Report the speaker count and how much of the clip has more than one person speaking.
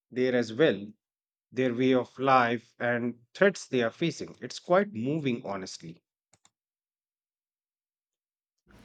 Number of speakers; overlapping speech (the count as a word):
one, no overlap